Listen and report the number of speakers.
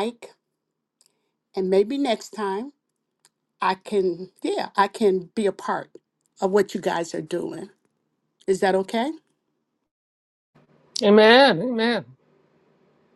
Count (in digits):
2